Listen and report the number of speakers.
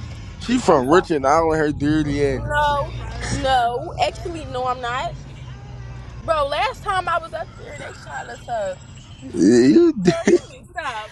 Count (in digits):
2